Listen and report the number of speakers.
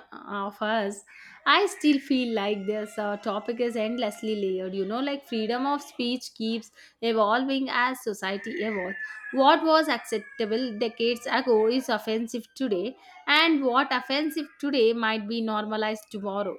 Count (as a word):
one